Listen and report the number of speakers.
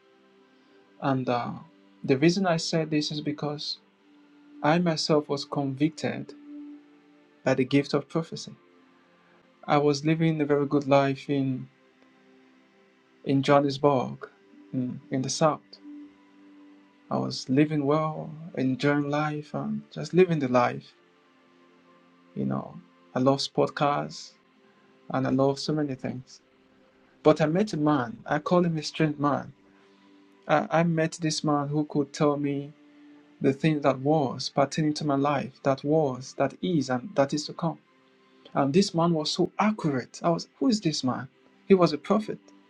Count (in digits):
1